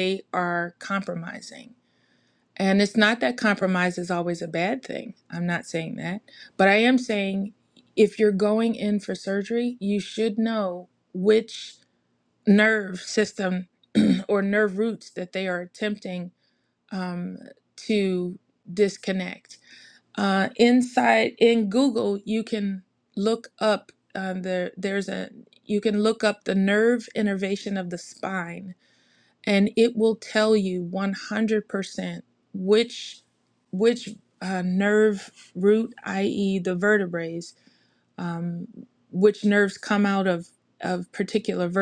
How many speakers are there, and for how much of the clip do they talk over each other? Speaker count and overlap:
1, no overlap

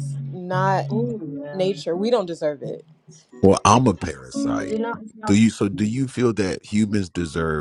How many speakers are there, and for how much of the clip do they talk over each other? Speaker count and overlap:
3, about 8%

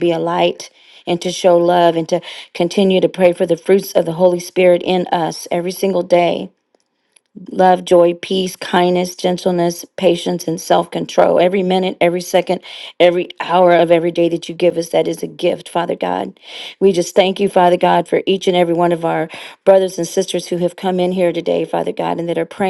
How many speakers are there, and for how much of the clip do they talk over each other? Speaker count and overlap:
1, no overlap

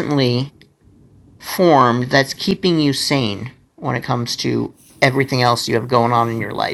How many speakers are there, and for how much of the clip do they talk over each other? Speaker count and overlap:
1, no overlap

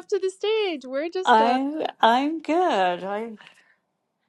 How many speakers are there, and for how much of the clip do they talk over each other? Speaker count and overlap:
2, about 8%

